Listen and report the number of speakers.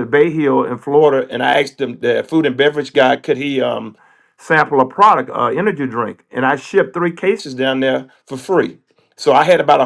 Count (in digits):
1